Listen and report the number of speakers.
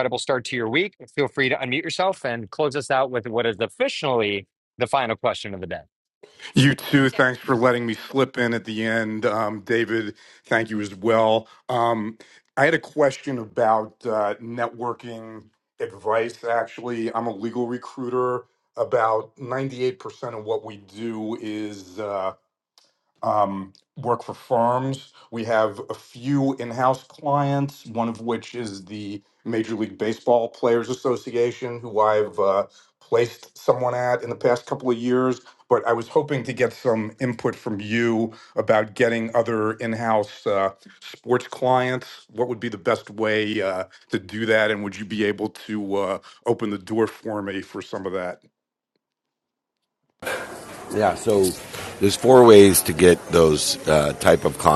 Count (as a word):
three